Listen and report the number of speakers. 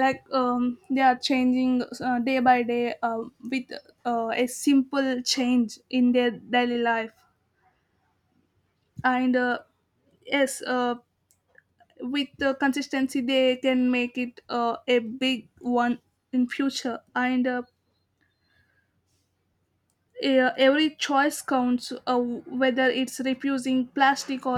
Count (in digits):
1